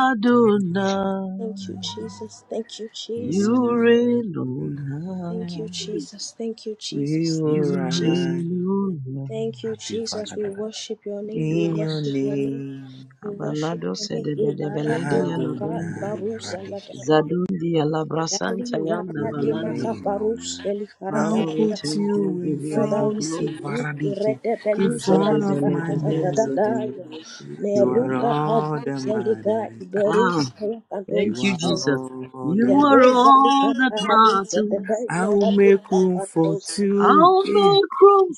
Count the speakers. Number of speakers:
three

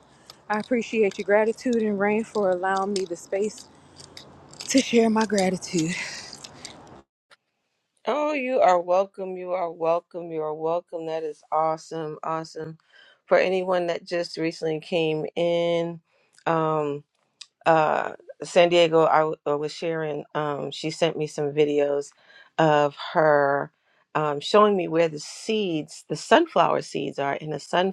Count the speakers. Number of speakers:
two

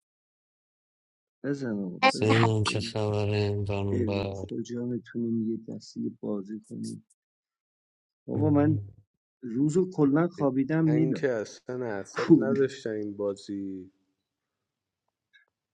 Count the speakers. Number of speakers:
three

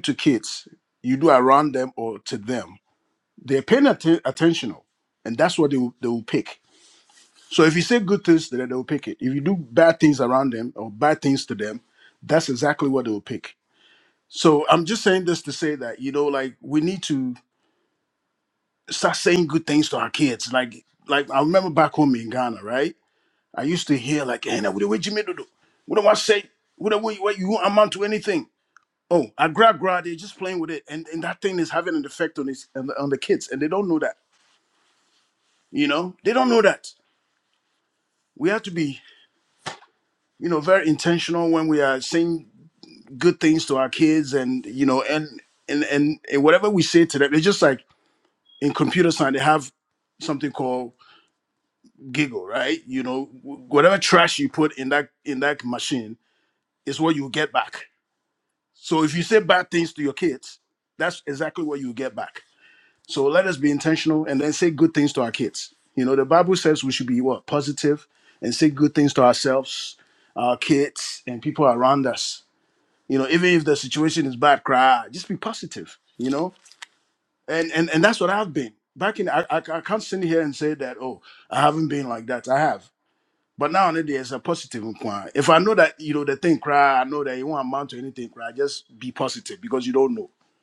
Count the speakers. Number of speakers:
one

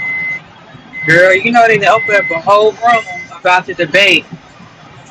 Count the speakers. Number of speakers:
one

